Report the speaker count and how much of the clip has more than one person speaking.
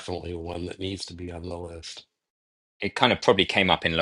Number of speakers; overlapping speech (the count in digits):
2, no overlap